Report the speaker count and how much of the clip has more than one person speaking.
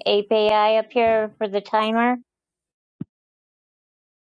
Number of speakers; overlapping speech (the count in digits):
1, no overlap